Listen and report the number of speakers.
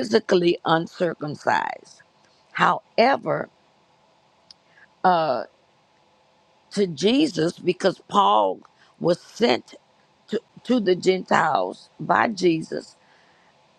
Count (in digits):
1